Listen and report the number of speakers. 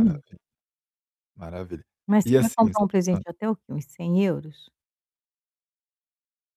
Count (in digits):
2